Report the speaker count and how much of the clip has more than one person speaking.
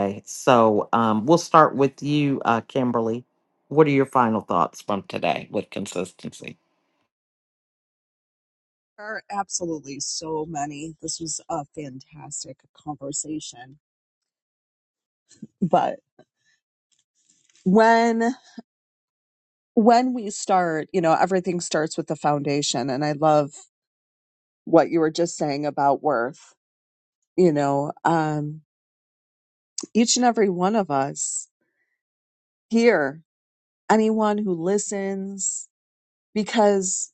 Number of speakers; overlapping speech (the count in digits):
2, no overlap